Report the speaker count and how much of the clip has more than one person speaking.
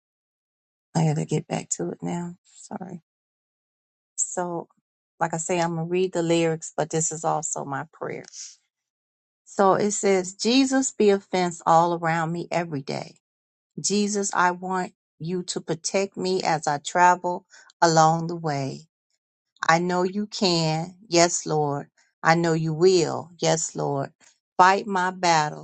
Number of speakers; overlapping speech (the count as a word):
one, no overlap